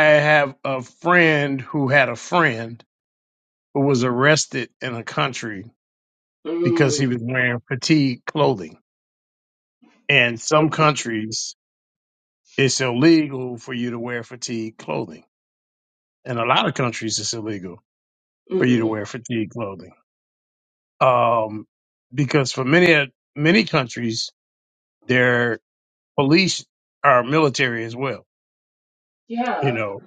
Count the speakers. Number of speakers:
2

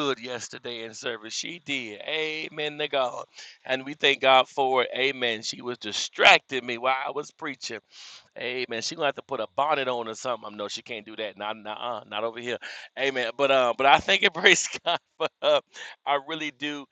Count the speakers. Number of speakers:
1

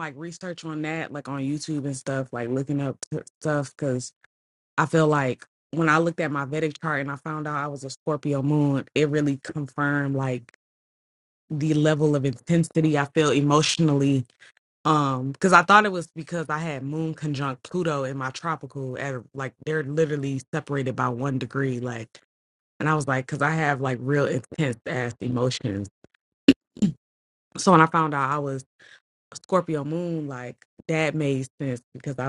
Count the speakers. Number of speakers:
1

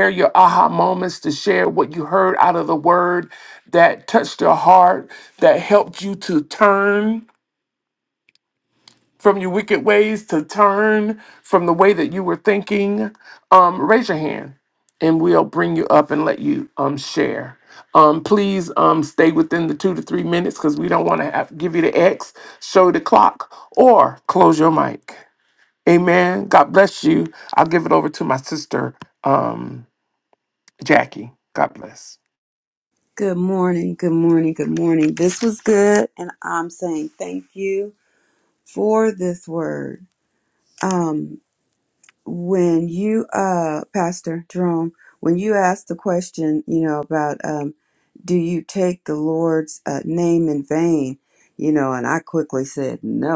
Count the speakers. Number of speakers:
2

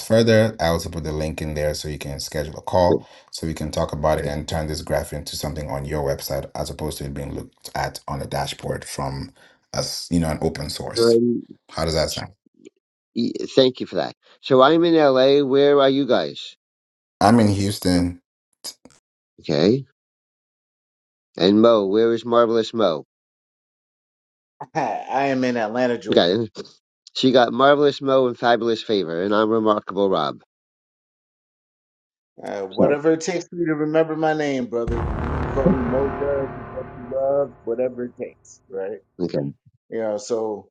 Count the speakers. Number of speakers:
3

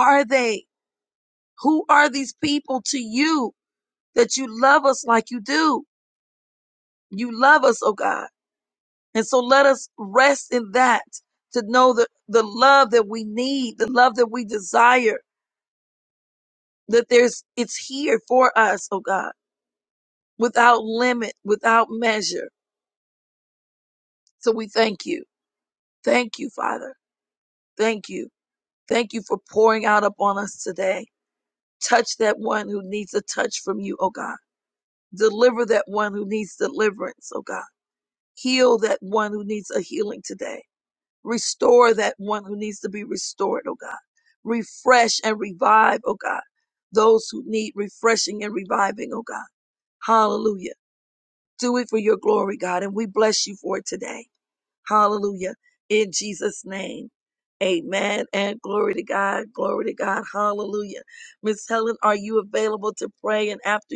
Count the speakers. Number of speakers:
1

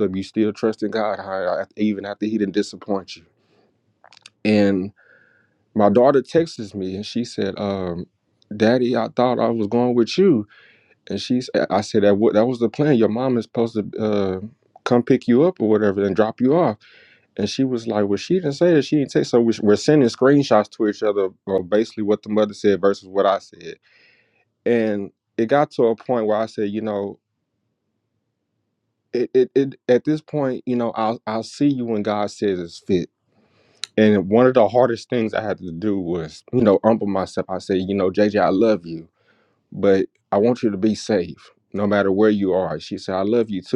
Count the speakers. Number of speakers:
1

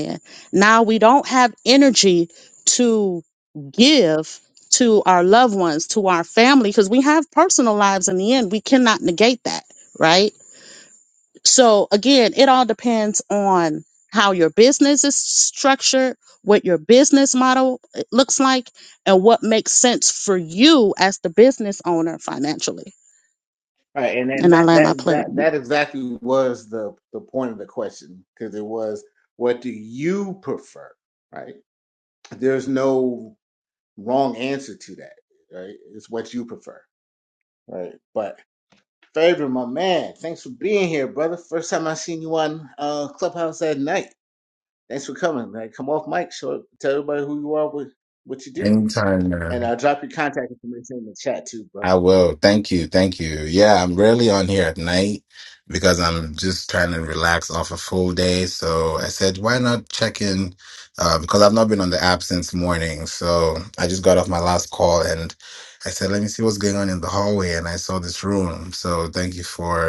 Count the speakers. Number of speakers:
3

